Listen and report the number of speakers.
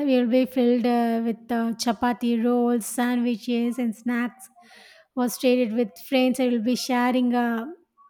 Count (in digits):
1